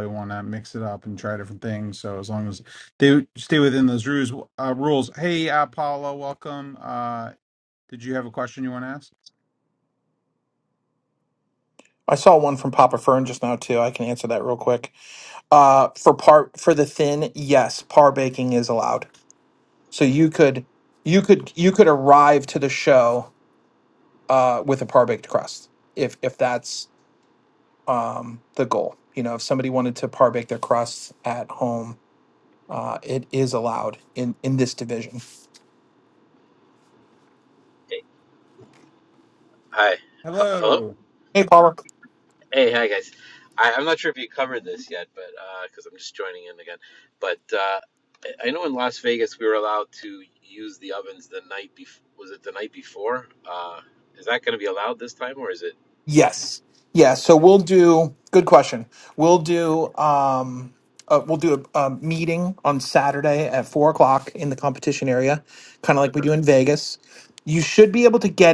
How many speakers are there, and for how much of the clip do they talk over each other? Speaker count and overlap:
3, about 1%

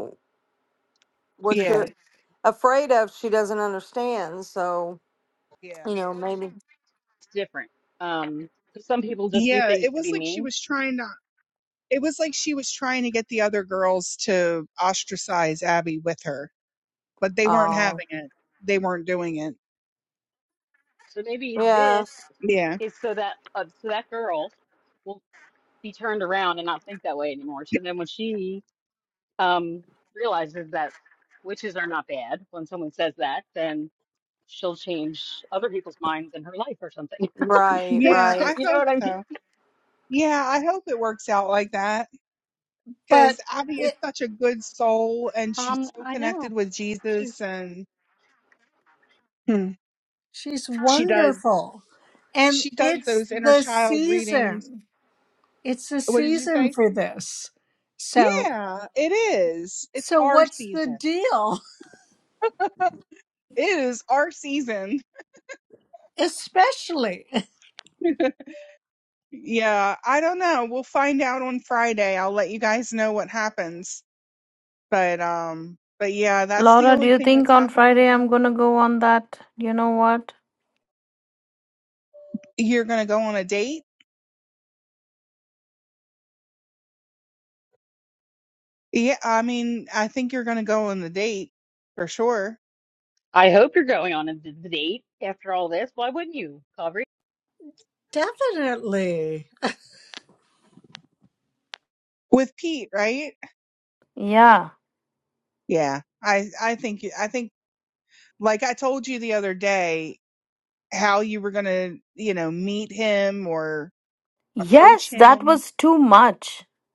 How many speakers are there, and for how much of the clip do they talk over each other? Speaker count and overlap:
5, about 10%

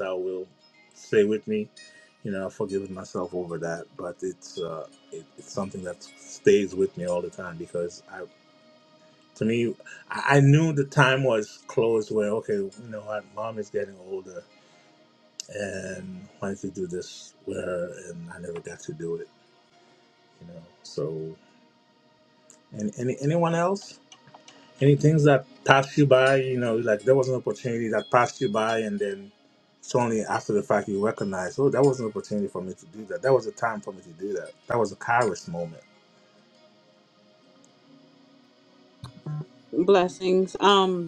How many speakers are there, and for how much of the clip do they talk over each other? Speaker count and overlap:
2, no overlap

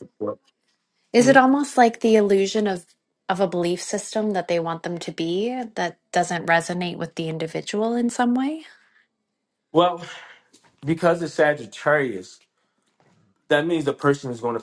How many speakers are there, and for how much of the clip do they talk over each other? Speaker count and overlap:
2, about 1%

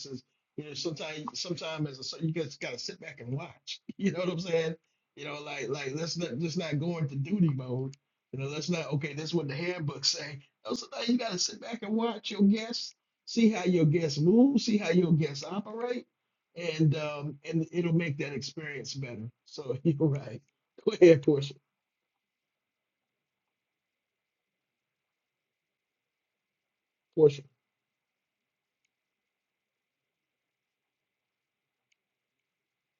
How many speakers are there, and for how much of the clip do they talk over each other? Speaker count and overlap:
1, no overlap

